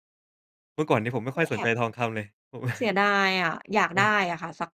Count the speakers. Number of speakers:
two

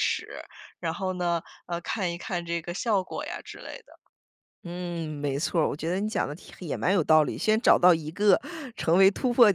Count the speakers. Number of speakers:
two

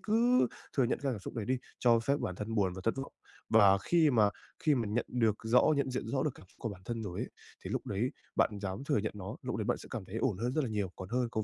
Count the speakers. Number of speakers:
one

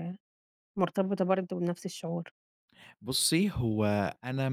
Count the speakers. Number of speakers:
two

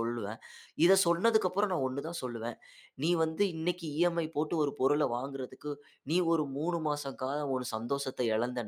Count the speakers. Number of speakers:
one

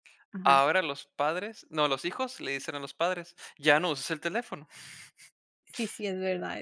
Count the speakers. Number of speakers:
two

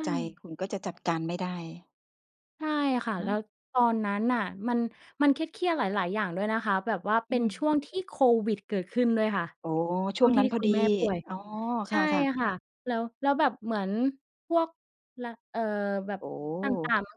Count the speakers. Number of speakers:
two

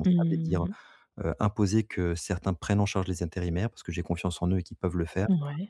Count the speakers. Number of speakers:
two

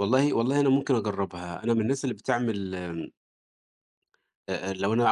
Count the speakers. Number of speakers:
one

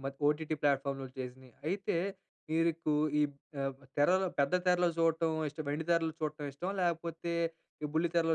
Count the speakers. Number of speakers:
one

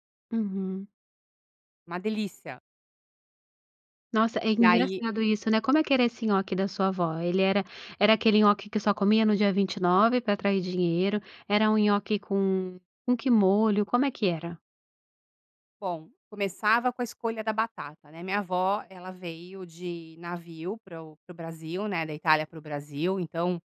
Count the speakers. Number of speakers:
two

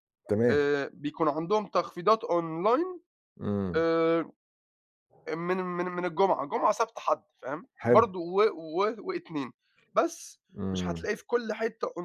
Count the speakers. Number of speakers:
two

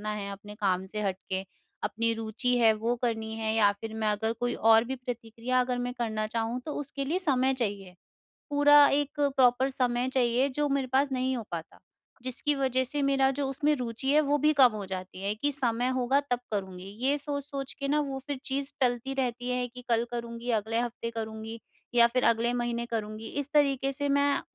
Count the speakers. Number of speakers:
one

